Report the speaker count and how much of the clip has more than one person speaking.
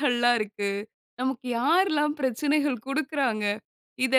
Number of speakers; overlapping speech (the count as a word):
one, no overlap